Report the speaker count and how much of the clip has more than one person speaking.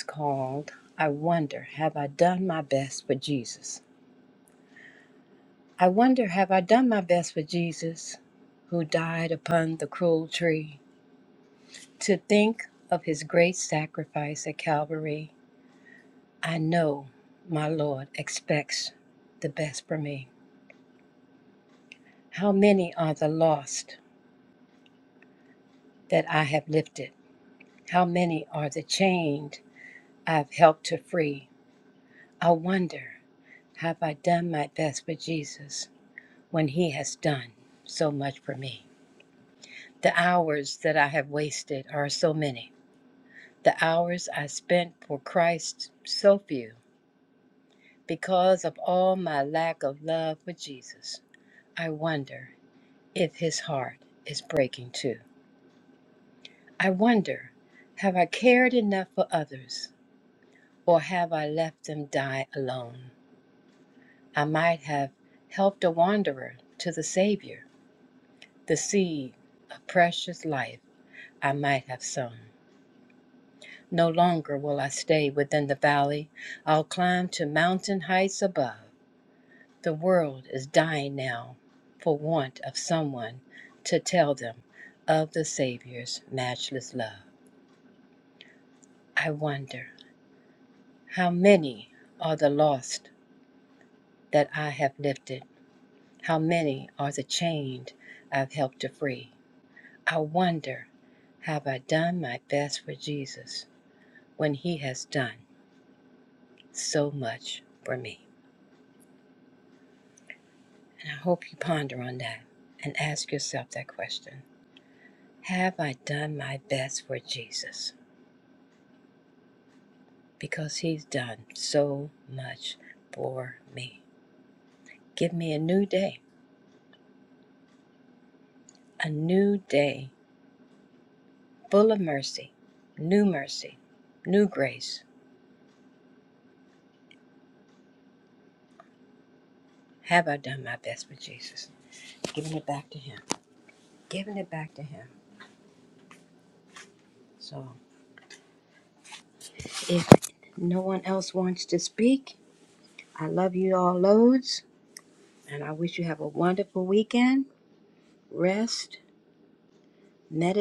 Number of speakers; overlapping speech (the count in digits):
1, no overlap